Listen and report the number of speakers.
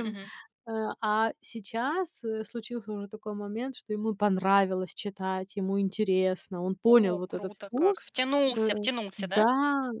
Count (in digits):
2